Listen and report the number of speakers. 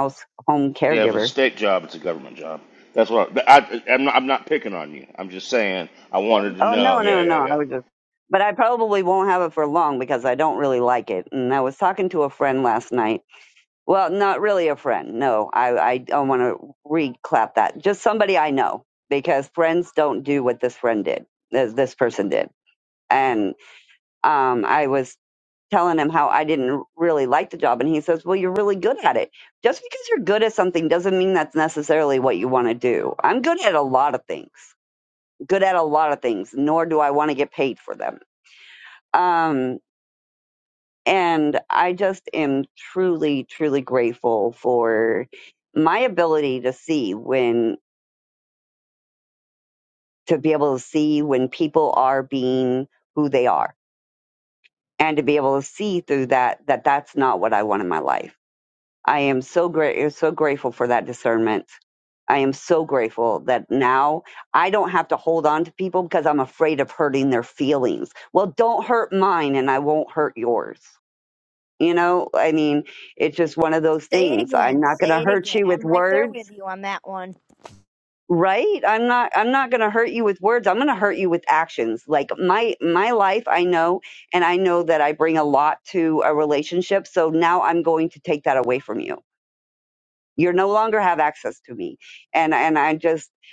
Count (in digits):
3